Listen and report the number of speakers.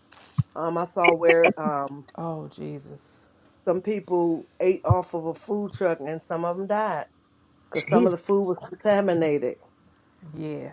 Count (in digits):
2